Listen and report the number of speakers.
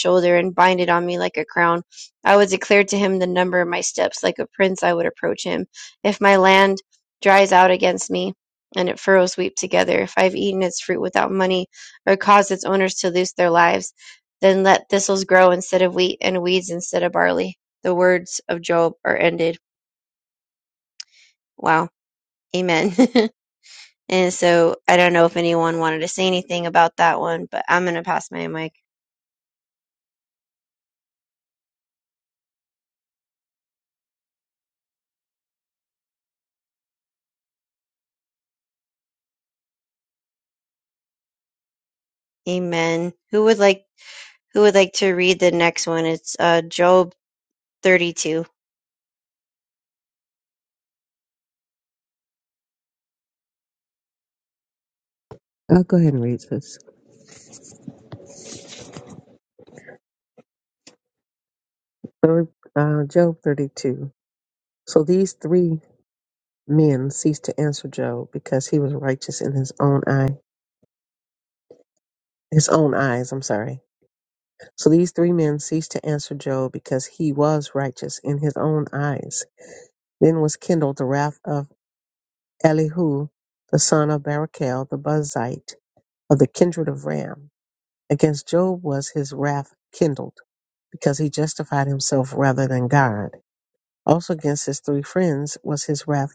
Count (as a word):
two